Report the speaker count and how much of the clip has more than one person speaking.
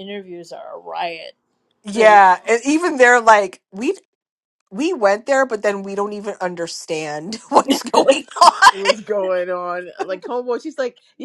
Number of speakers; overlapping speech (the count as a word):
three, about 2%